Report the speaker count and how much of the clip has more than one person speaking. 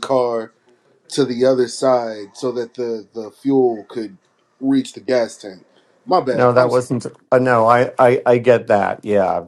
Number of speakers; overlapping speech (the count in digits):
2, about 5%